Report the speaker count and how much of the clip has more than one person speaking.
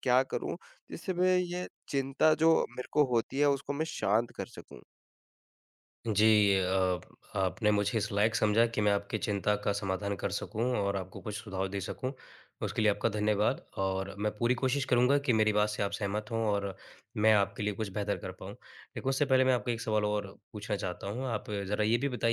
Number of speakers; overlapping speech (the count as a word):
two, no overlap